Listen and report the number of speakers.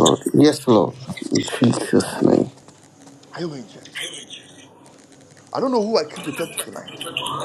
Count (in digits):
2